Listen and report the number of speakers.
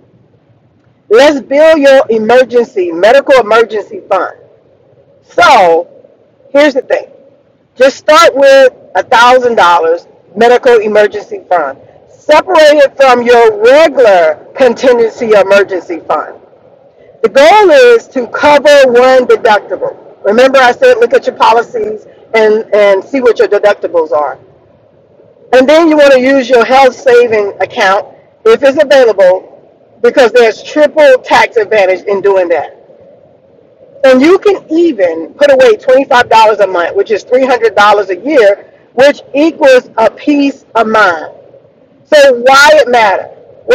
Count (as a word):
one